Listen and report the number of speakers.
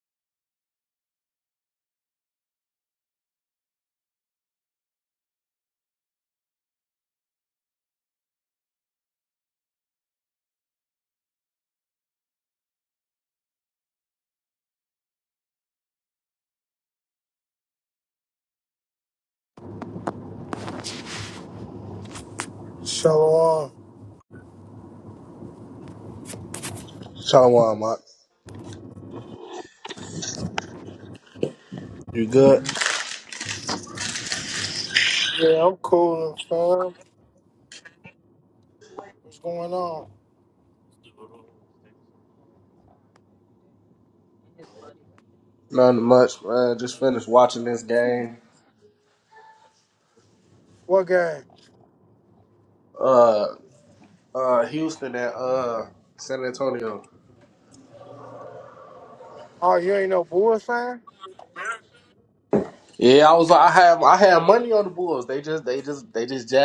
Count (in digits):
2